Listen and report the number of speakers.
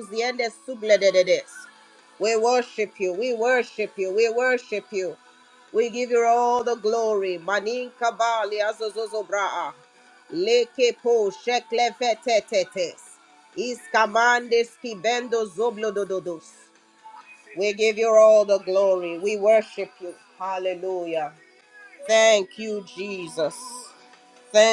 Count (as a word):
one